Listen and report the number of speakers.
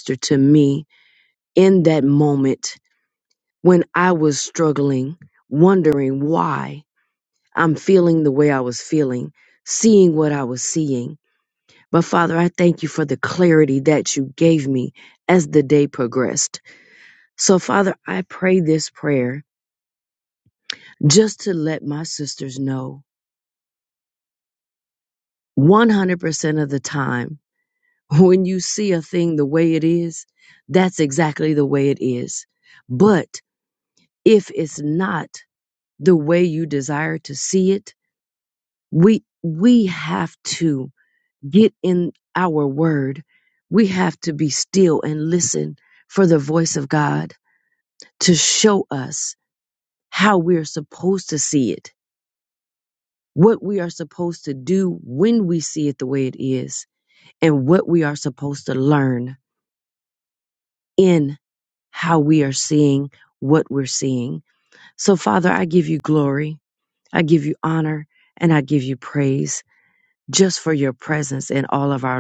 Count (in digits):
1